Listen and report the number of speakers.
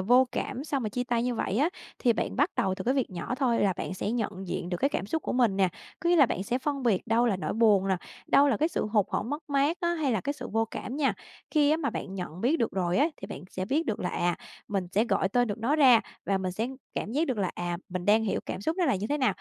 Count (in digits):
1